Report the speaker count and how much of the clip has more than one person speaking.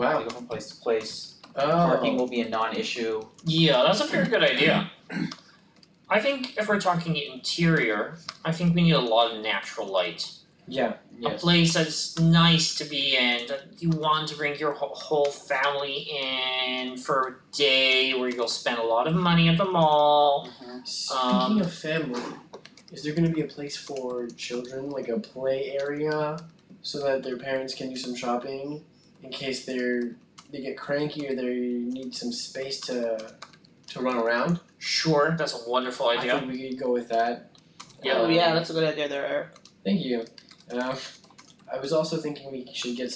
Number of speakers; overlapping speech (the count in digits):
4, about 6%